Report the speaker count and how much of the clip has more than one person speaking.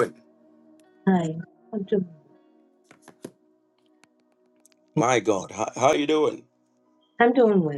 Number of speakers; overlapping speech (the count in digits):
2, about 1%